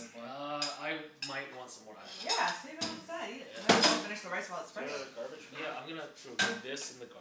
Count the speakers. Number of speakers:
3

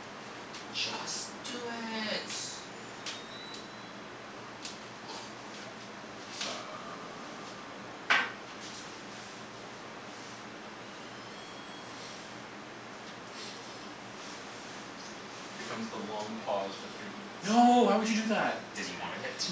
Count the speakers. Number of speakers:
3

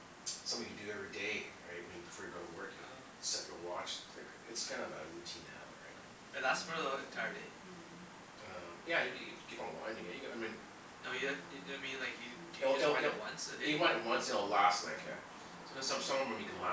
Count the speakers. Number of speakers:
2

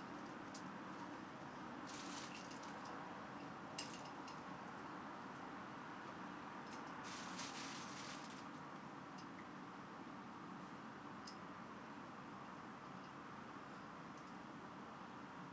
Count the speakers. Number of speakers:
0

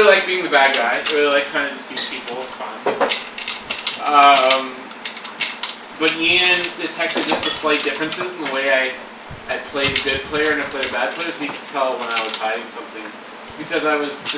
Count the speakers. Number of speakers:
1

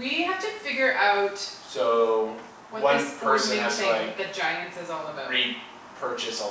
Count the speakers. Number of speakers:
2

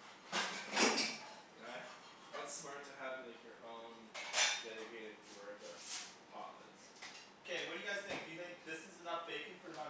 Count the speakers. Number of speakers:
2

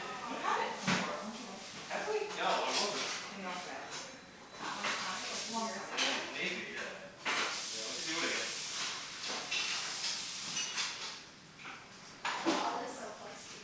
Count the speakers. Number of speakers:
3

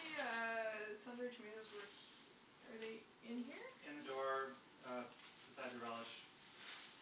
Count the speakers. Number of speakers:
2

